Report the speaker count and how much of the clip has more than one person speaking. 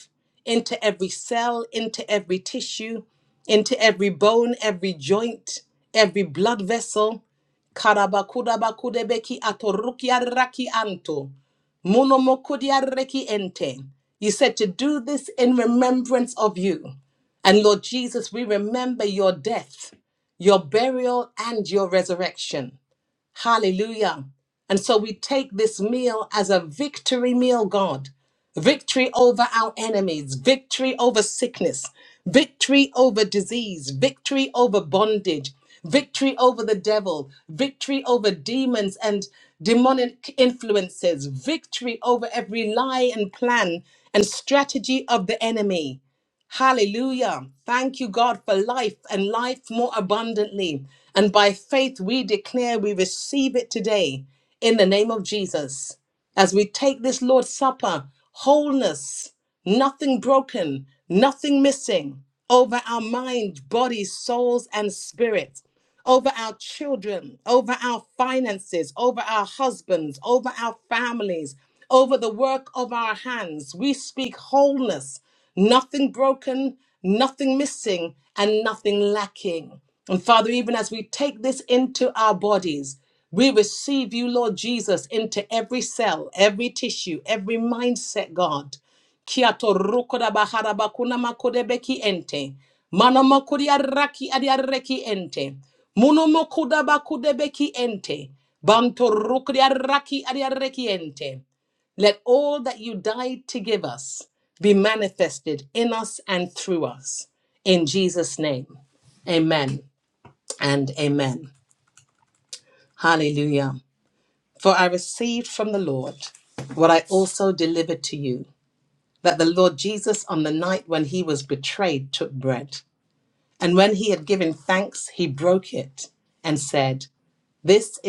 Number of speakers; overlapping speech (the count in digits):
1, no overlap